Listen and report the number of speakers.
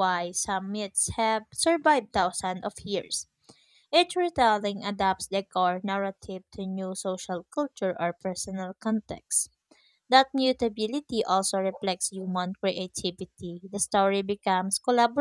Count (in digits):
1